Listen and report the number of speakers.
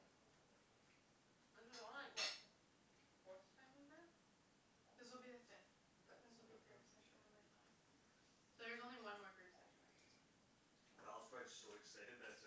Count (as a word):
three